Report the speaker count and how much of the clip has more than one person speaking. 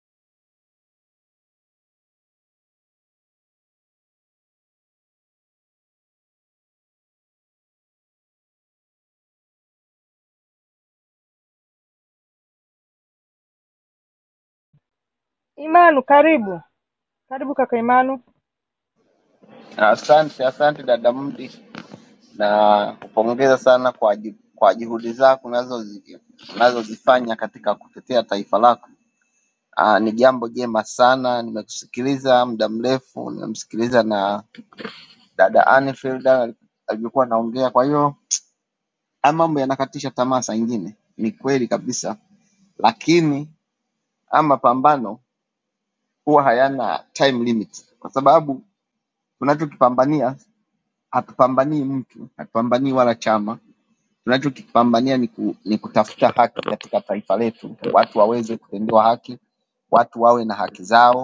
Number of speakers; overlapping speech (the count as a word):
two, no overlap